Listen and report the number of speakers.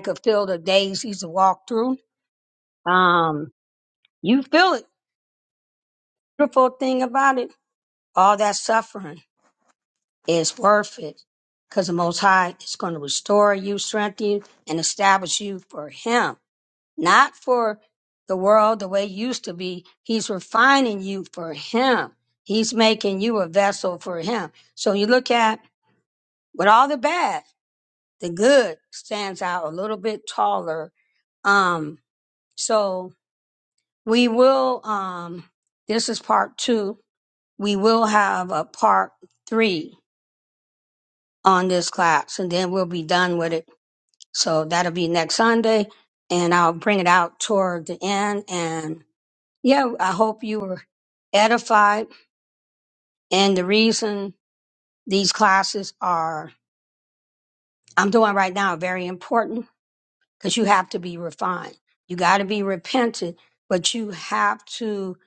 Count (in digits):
1